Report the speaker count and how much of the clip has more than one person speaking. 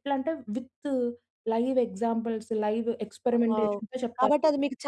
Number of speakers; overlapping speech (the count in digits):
2, about 13%